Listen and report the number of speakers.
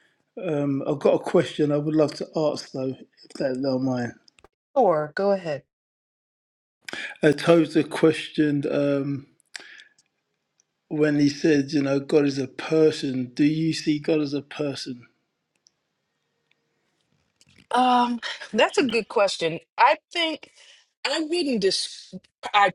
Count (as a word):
two